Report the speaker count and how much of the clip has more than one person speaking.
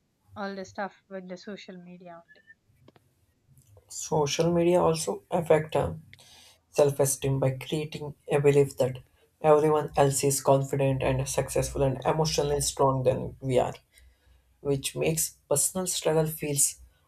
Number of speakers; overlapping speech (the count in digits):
2, no overlap